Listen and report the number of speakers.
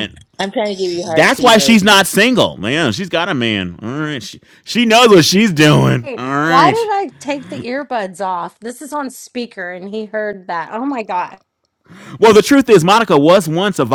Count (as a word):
three